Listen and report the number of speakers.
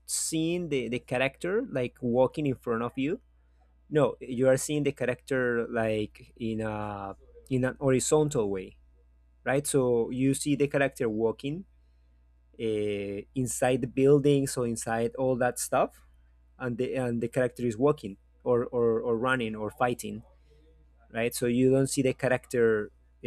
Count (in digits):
1